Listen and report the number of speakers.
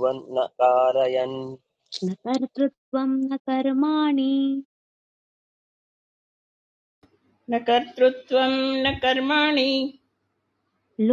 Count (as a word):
three